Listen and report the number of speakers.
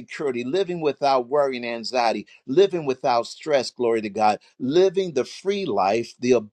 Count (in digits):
1